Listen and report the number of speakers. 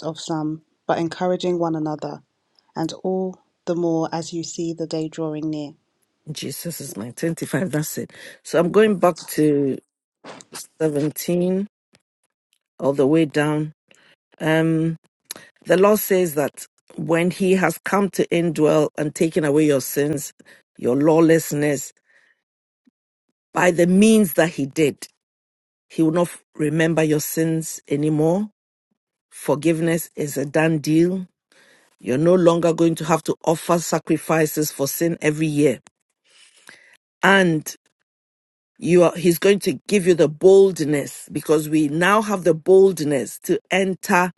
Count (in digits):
2